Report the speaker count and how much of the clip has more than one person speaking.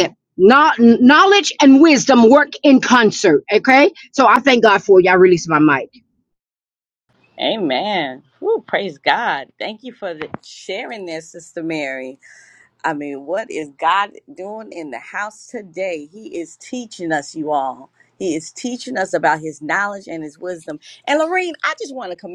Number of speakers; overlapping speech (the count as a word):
two, no overlap